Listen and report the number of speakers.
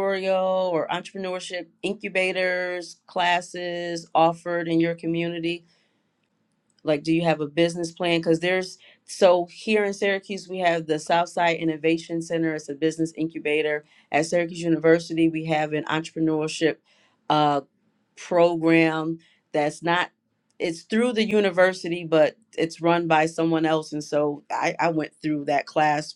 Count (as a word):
one